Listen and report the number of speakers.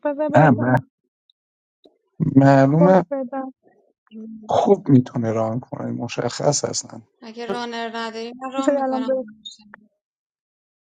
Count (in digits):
3